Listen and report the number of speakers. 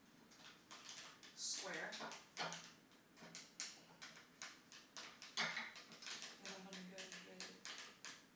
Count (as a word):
one